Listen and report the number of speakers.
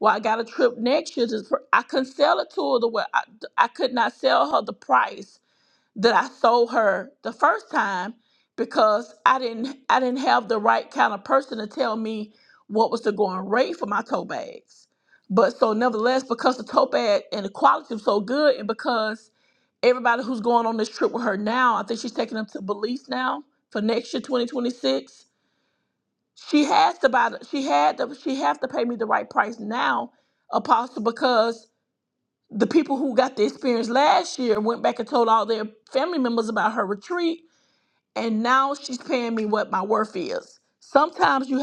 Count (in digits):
1